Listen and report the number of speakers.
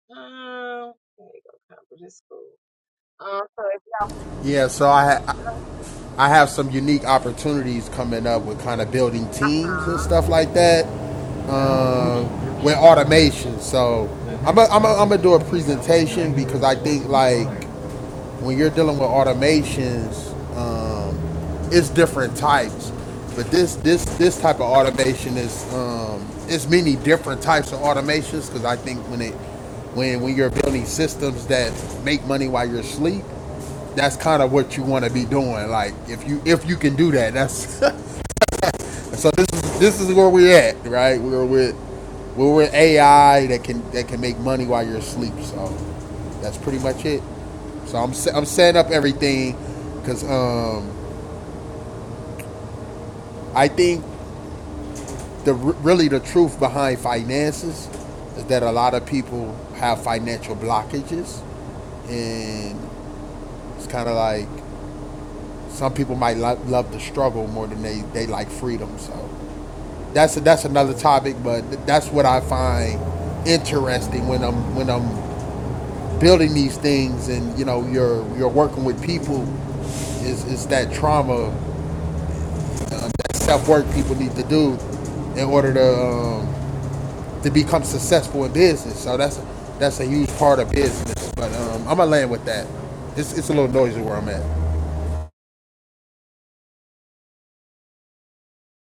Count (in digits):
2